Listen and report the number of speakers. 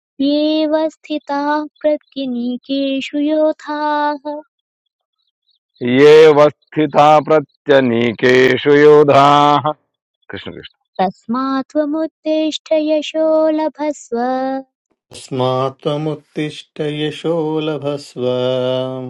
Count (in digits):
3